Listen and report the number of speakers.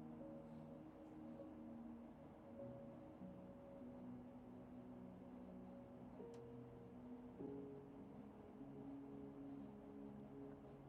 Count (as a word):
zero